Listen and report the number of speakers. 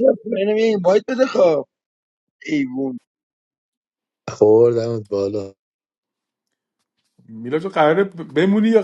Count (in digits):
3